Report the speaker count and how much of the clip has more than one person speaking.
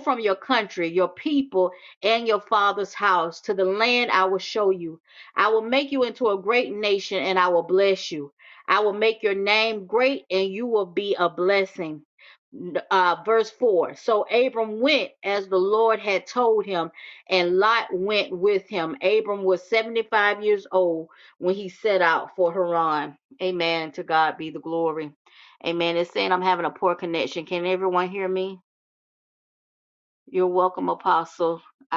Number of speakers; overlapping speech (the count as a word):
one, no overlap